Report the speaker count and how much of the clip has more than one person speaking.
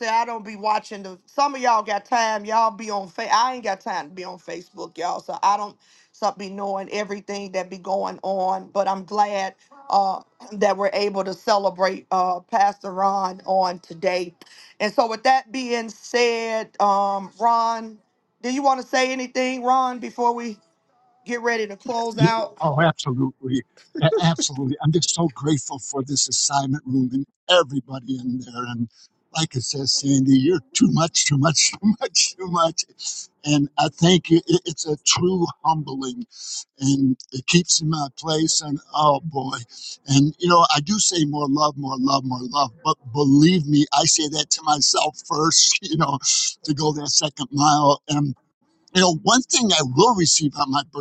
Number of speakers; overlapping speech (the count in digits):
2, no overlap